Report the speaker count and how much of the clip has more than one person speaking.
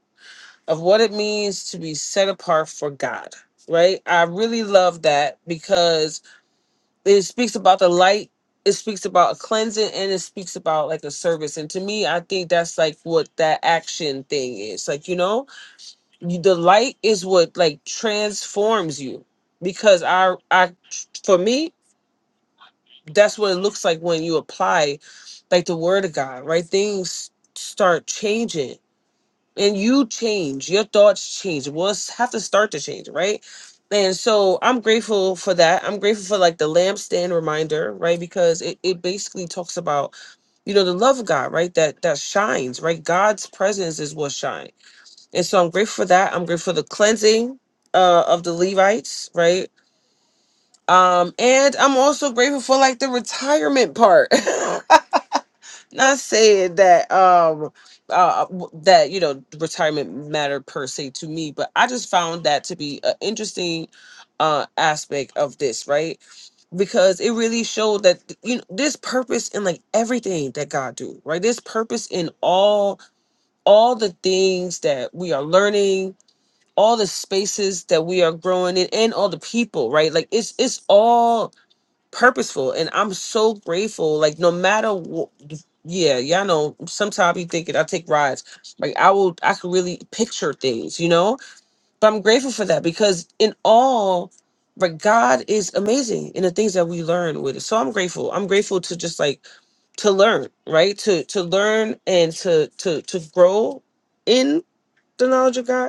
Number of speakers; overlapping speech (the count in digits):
1, no overlap